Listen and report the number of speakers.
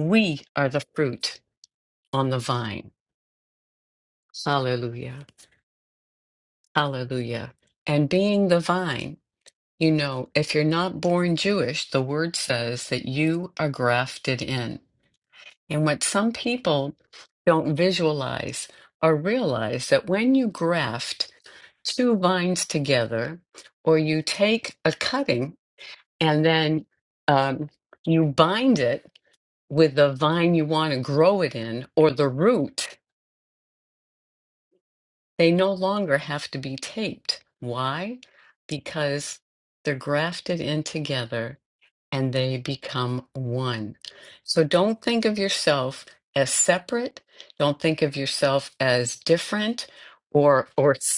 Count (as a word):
one